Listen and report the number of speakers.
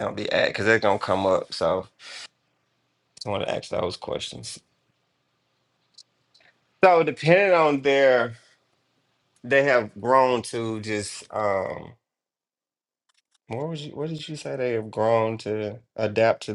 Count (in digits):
1